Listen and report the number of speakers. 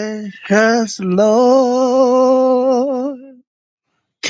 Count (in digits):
1